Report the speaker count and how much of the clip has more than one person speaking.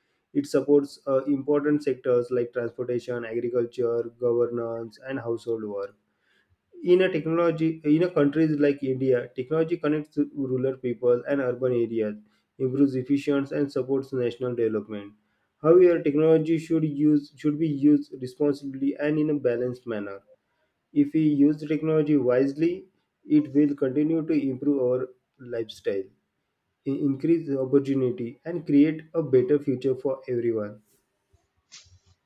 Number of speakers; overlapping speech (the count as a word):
one, no overlap